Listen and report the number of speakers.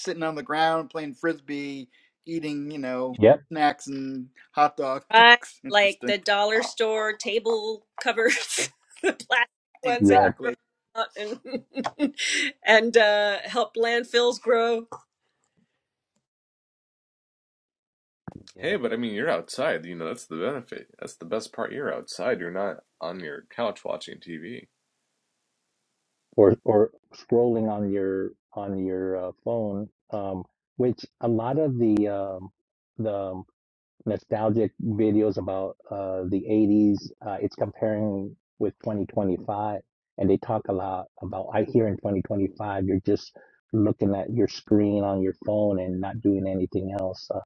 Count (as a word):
four